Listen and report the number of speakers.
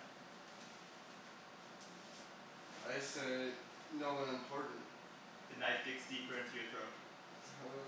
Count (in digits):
2